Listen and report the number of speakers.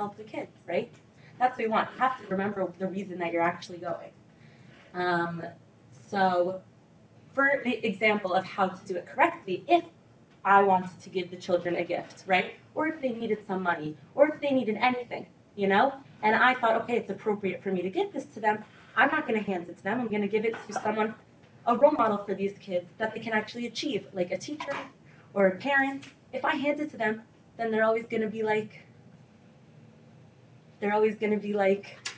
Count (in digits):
1